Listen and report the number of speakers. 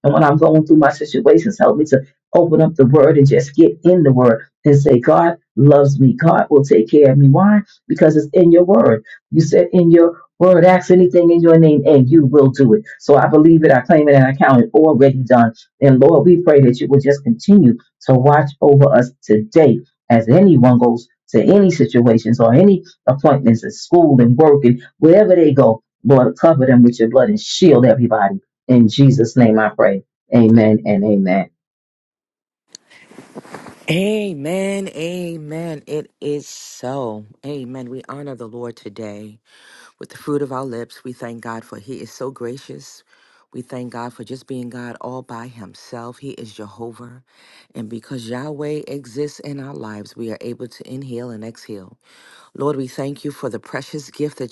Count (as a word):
two